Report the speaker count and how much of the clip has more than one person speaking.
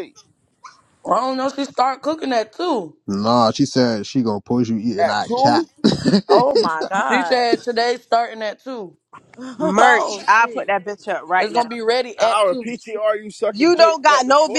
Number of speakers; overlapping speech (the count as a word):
five, about 28%